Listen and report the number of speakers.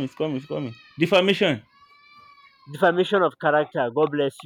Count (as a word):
two